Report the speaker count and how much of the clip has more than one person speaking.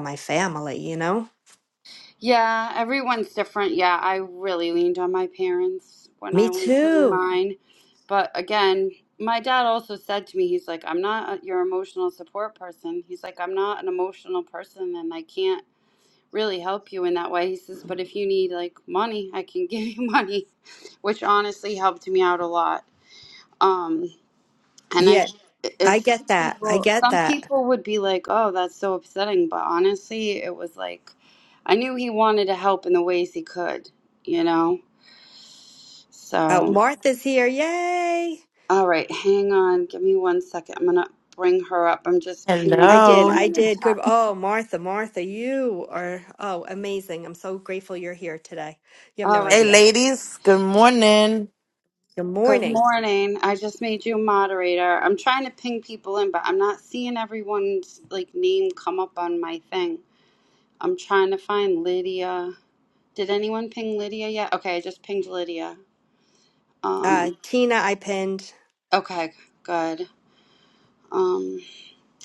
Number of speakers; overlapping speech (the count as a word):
three, about 8%